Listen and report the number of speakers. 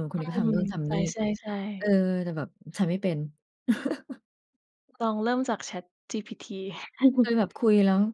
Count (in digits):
2